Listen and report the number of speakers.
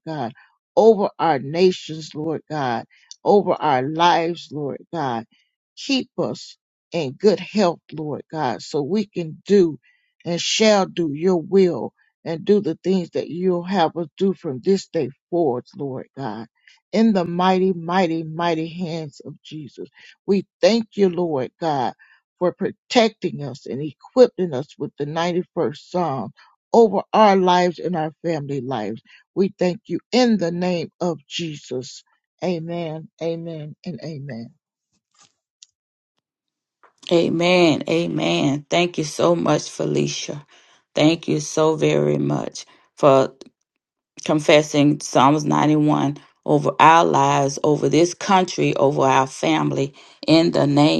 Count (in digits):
2